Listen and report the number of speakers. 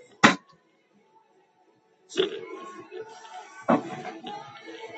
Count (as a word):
zero